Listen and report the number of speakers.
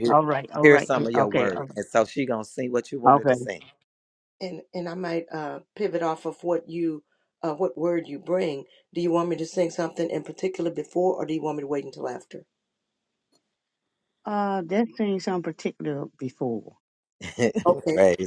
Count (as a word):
three